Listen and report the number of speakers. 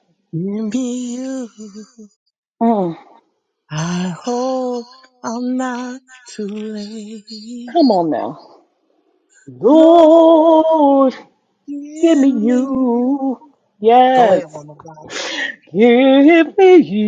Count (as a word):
two